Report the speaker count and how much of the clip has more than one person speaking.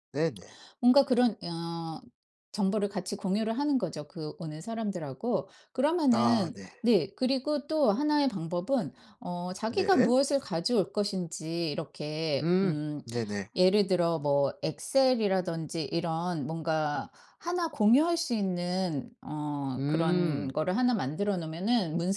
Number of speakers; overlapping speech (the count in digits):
2, about 10%